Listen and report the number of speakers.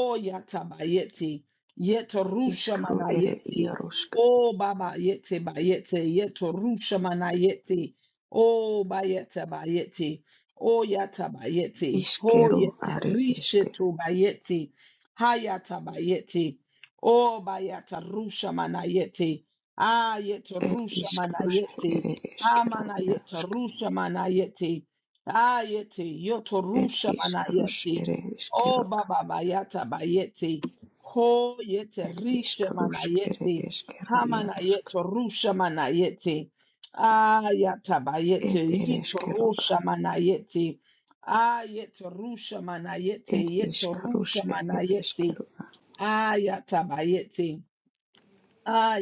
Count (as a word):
two